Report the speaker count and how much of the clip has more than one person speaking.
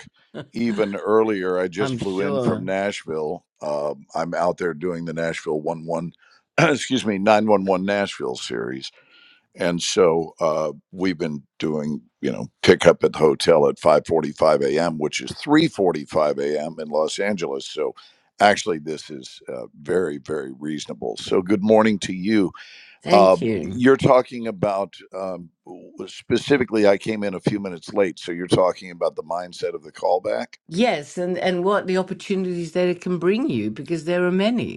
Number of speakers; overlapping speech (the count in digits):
2, about 4%